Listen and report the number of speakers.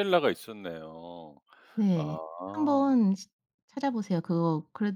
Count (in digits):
2